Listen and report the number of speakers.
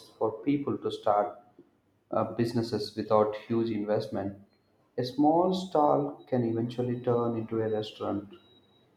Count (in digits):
1